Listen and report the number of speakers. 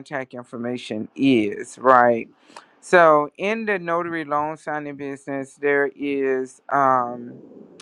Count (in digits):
1